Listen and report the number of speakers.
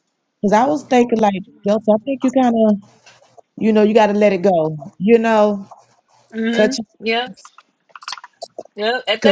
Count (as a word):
two